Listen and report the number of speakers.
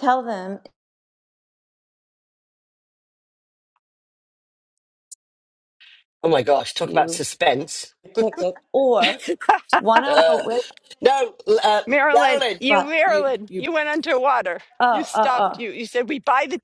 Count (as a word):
three